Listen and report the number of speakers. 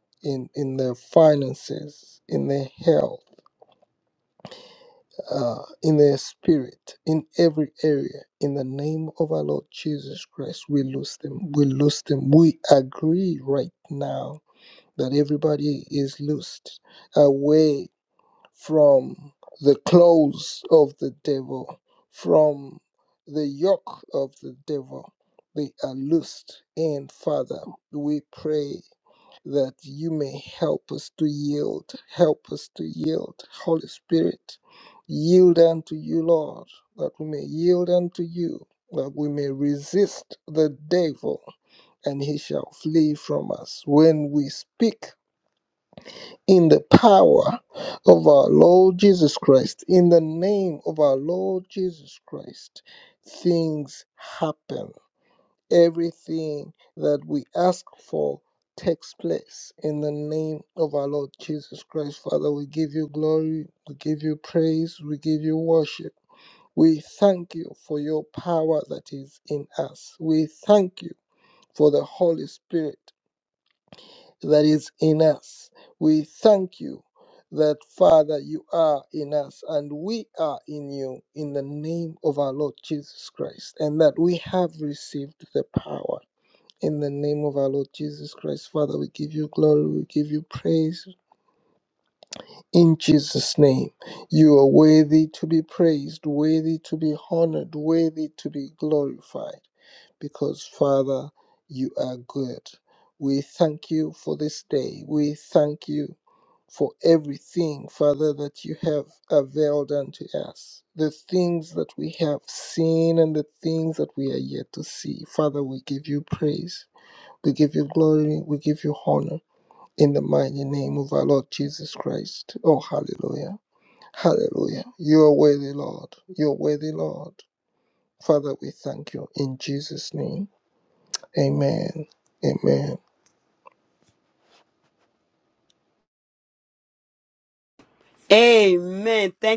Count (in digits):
2